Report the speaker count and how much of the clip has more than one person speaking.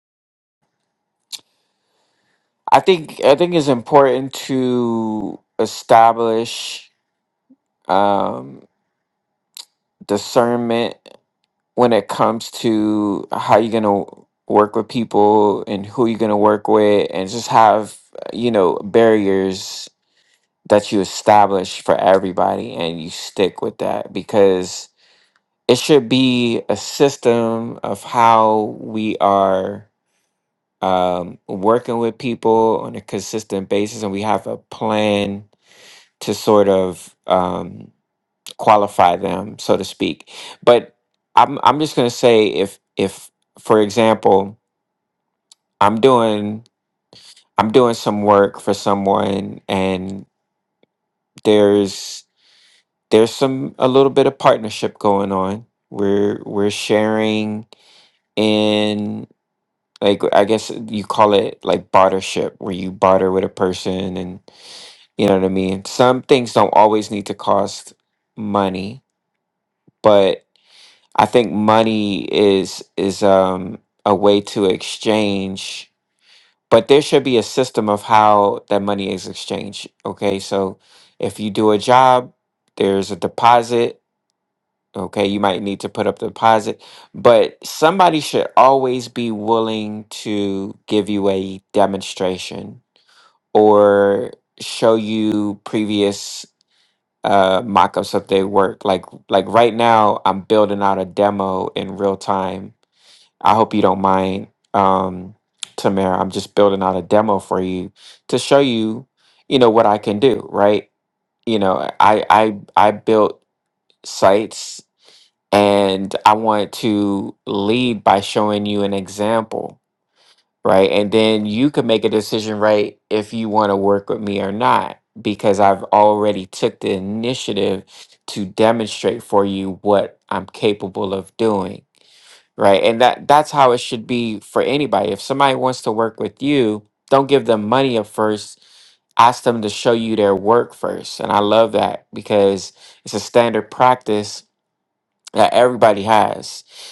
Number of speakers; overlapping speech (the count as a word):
one, no overlap